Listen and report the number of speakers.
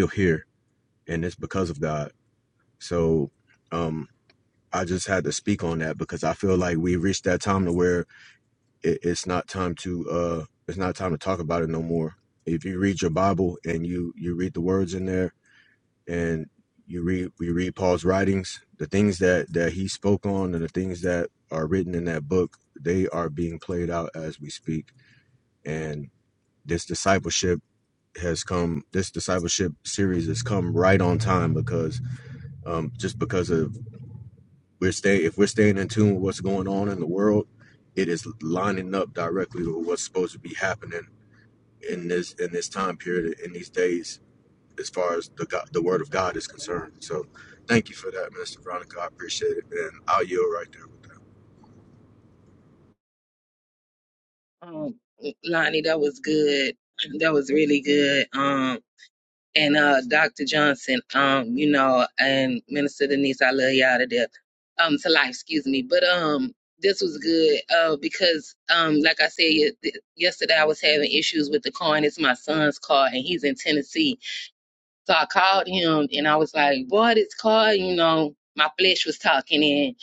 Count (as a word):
two